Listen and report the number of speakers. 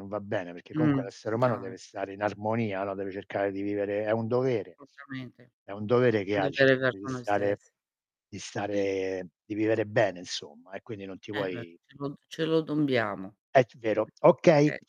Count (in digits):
2